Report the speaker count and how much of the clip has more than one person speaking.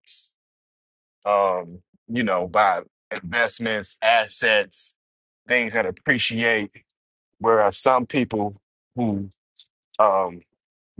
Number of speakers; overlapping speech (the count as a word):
one, no overlap